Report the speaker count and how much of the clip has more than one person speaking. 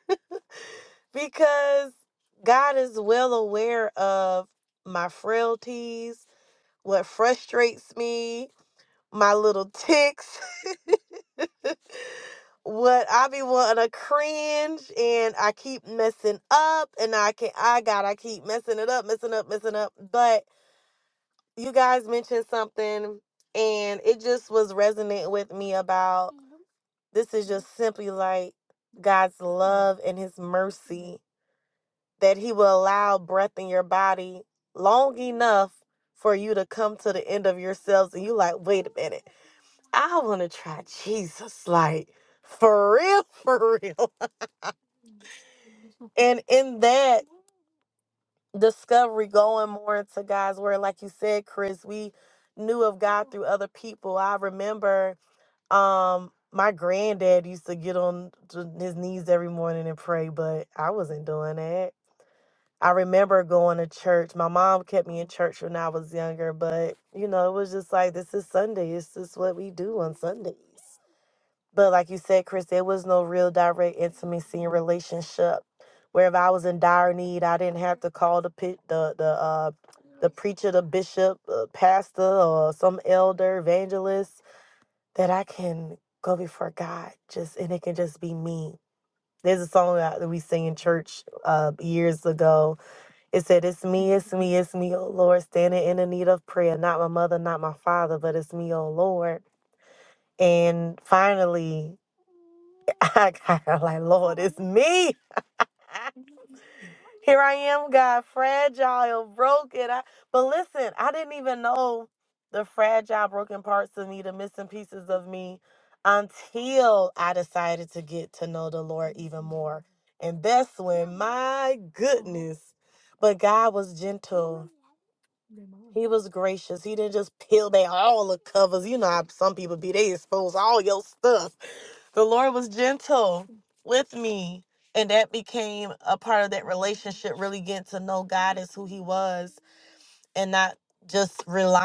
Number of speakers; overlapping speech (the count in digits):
1, no overlap